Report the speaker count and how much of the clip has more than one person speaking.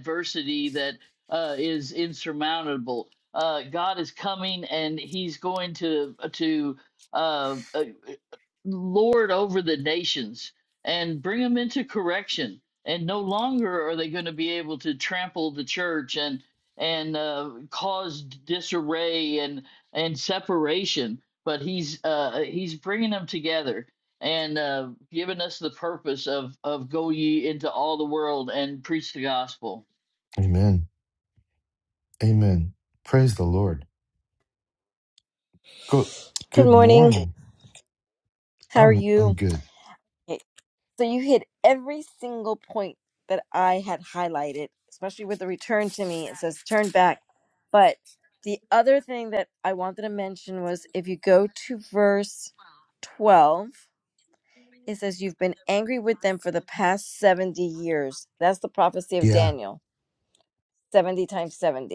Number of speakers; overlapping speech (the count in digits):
3, about 2%